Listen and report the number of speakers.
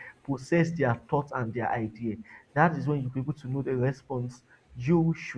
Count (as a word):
one